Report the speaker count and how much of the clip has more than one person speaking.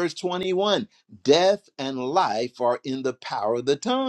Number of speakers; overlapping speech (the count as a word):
one, no overlap